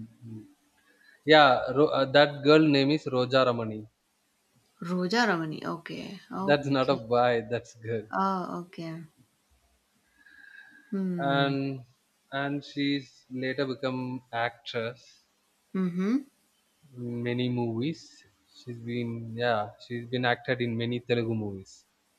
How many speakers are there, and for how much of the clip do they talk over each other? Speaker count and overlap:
2, about 4%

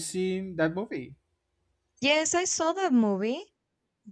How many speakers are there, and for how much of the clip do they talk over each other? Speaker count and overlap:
2, no overlap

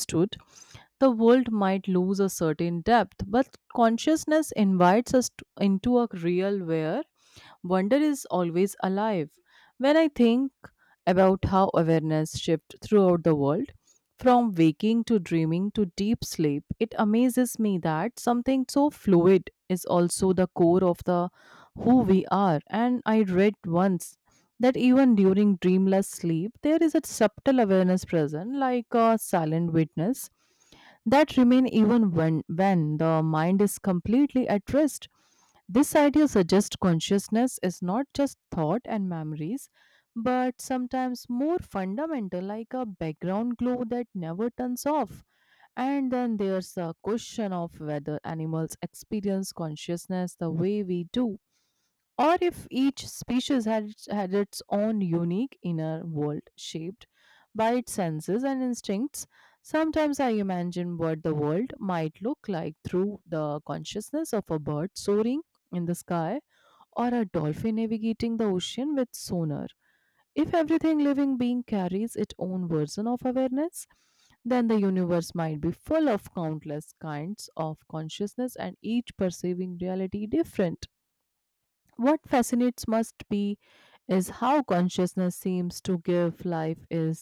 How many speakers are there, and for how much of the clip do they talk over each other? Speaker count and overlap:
1, no overlap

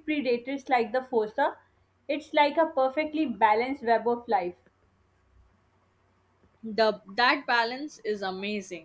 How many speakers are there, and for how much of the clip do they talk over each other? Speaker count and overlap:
2, no overlap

